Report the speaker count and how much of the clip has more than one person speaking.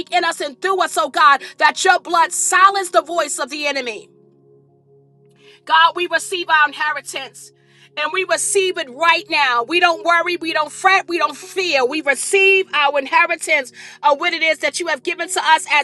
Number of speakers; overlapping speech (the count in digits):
1, no overlap